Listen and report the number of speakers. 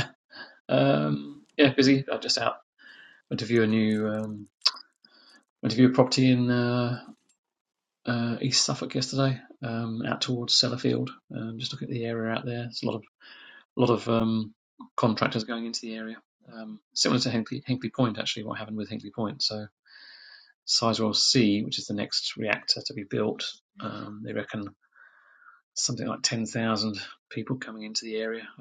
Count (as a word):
one